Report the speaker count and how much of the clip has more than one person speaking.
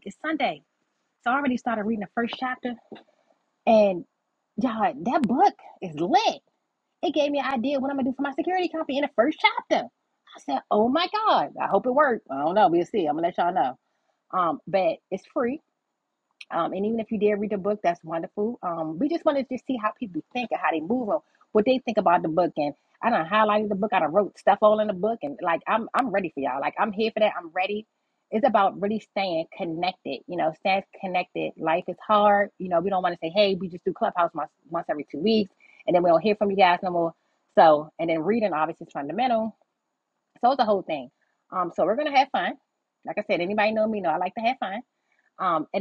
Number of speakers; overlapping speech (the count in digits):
1, no overlap